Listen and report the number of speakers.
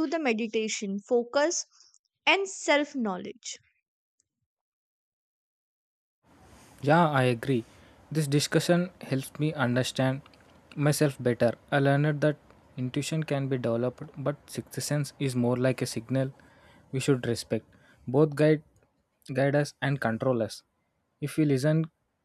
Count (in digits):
2